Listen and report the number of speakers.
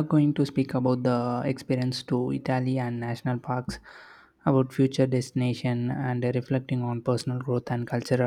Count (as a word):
one